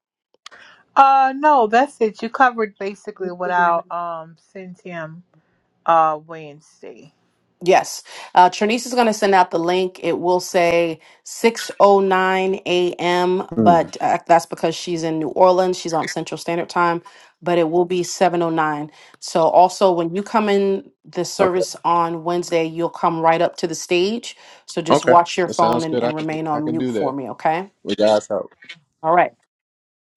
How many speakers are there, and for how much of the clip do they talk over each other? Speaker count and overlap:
three, about 10%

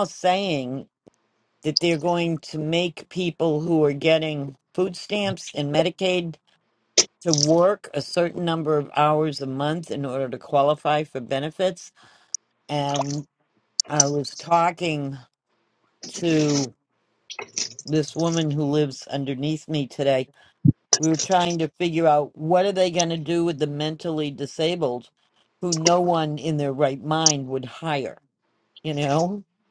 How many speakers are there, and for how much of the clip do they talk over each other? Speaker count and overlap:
one, no overlap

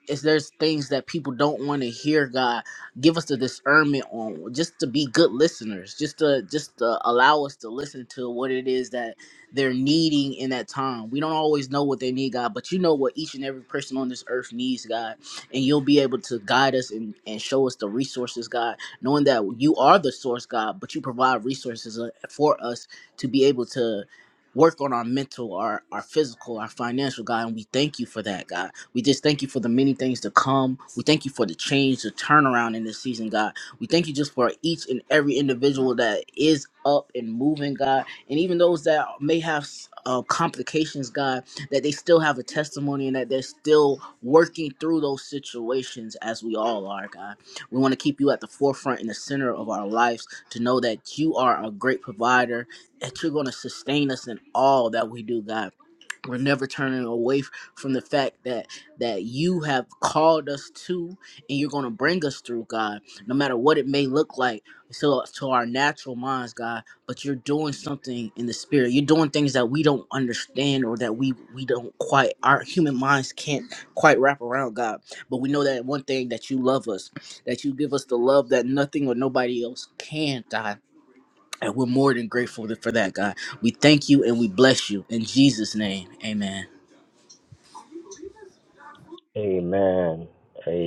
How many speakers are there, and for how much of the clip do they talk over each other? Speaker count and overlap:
two, no overlap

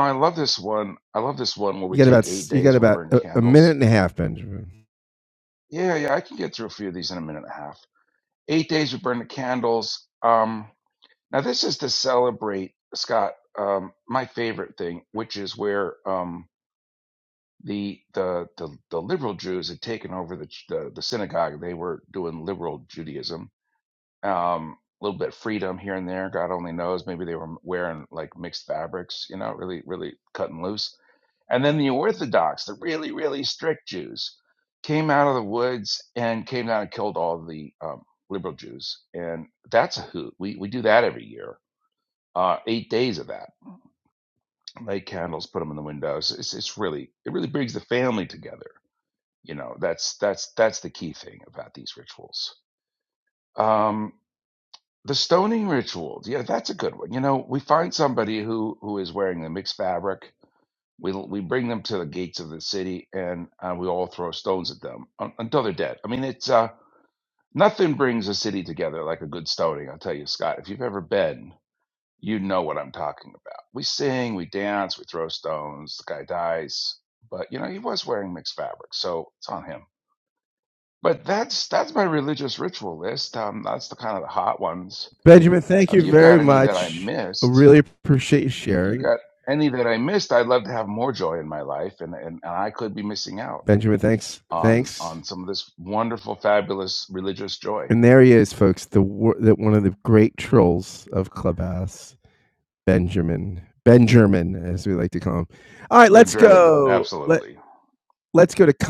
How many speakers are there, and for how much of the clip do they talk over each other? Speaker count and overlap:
two, about 4%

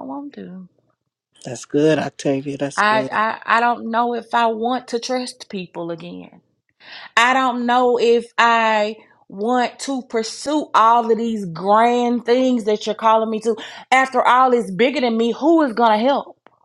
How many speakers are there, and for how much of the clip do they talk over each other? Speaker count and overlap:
two, about 3%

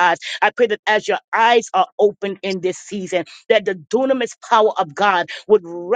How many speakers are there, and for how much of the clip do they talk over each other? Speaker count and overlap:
one, no overlap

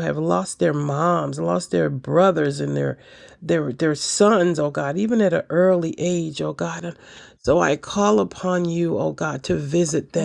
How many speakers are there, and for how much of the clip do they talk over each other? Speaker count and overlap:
one, no overlap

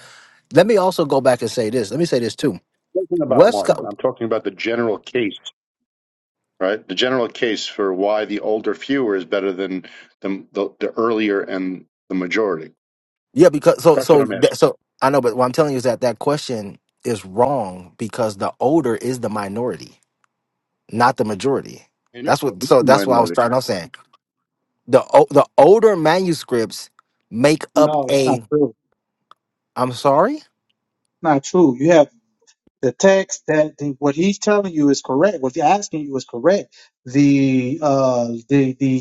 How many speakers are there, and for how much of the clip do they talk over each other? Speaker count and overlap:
three, about 7%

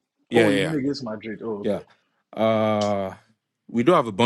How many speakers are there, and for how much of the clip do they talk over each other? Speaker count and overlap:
two, about 14%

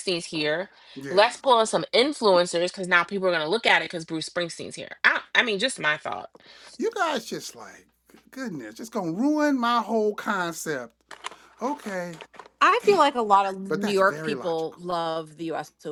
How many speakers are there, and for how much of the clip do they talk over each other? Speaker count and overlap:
three, about 9%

